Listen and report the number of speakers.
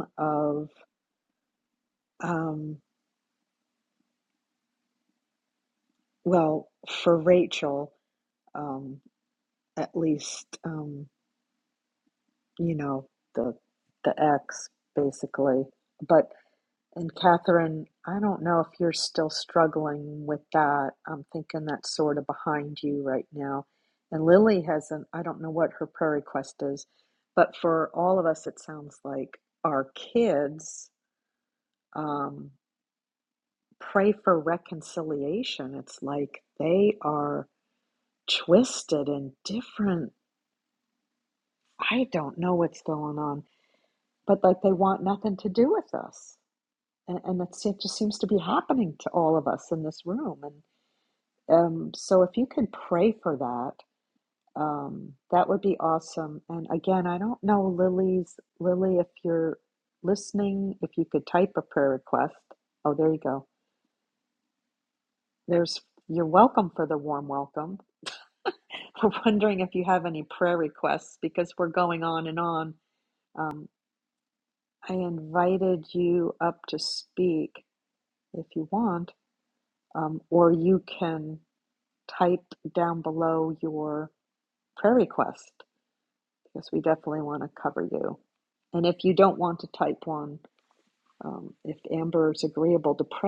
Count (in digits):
1